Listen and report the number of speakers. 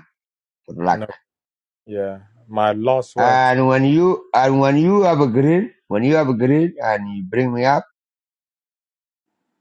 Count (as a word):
two